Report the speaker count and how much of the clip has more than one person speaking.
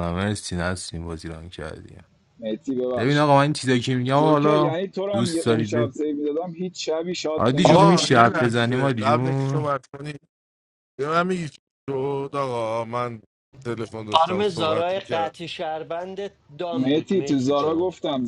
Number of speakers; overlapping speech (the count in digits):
4, about 34%